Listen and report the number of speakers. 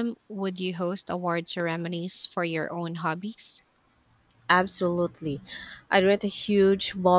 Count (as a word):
two